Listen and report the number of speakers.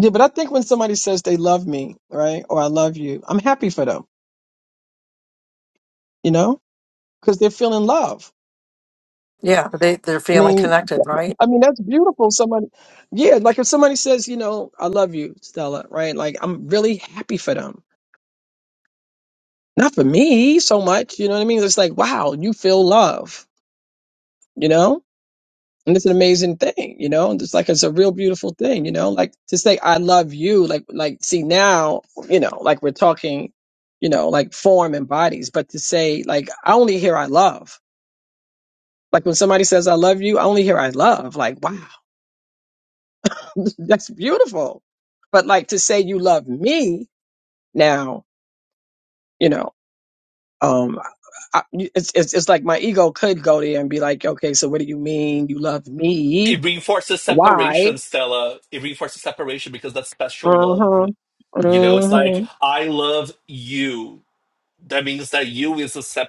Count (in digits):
3